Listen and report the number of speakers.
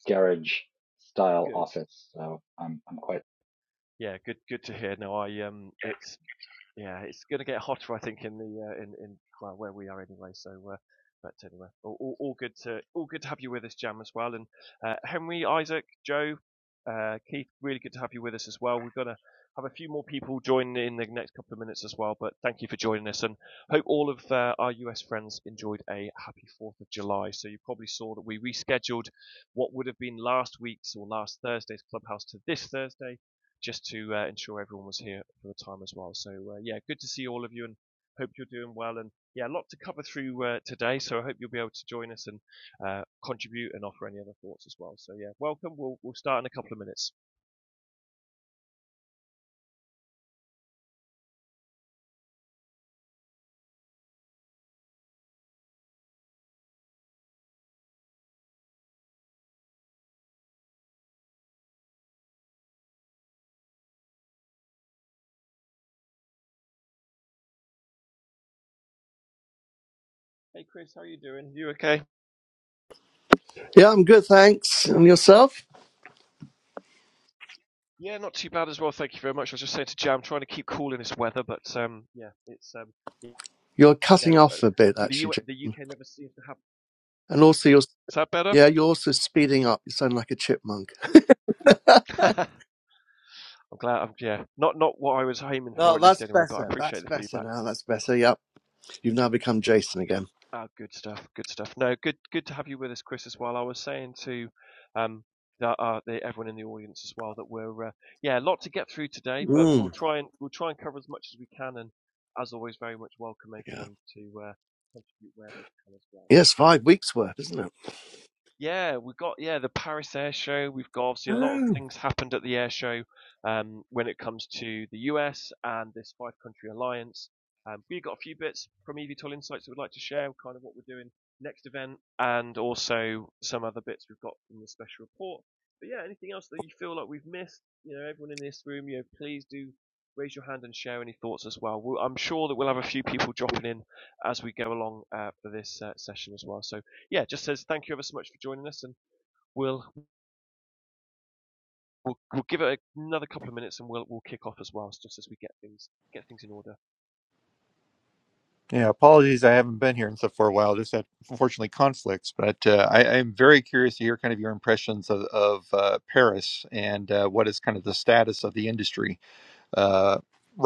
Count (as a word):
four